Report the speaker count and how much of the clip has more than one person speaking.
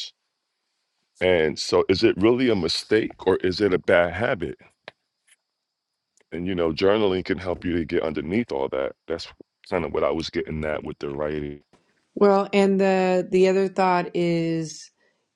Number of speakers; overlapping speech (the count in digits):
2, no overlap